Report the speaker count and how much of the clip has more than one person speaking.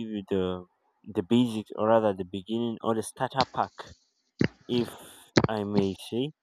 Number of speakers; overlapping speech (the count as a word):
one, no overlap